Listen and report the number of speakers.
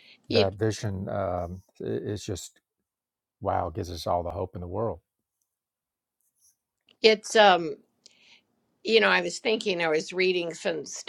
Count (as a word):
two